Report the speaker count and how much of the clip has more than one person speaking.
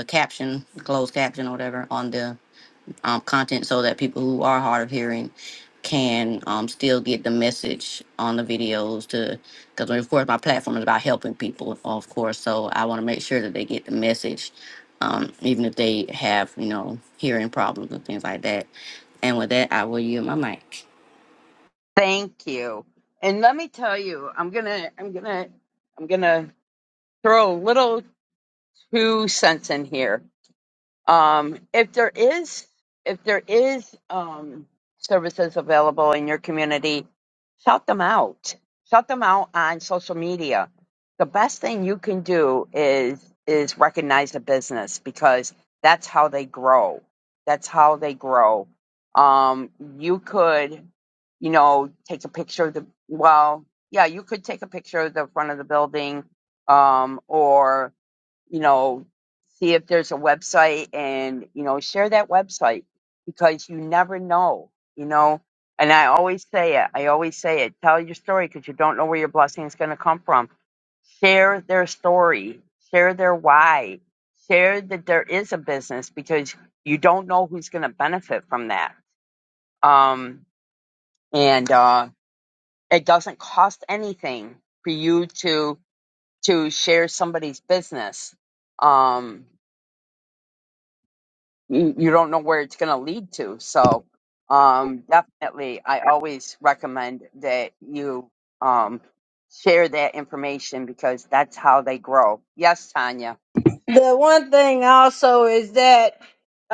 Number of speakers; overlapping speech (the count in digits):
3, no overlap